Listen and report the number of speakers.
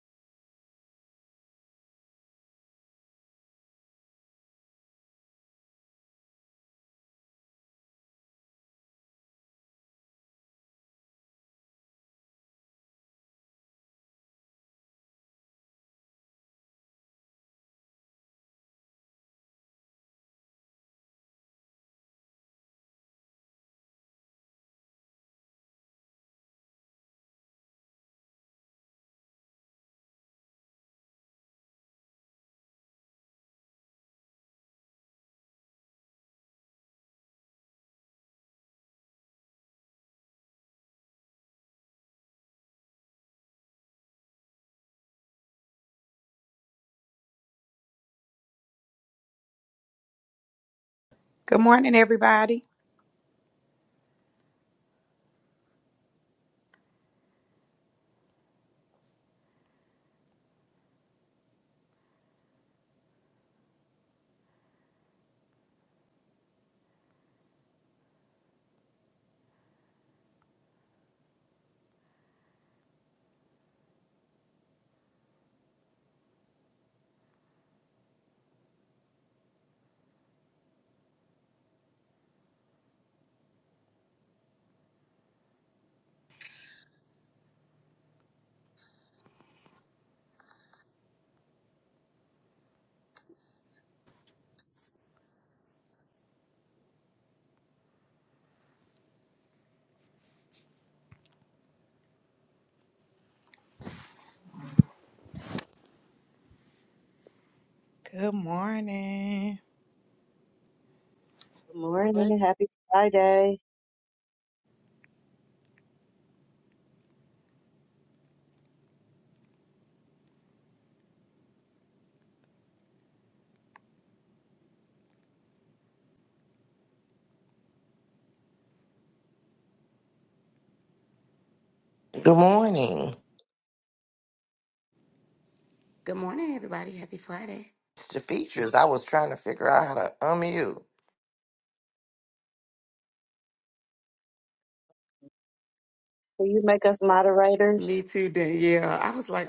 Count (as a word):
four